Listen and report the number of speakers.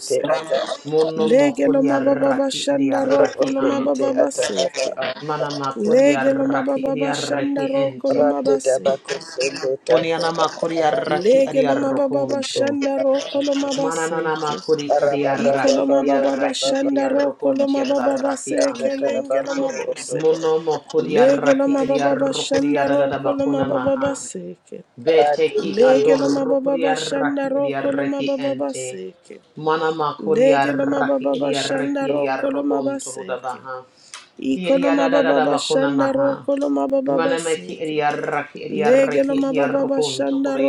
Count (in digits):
3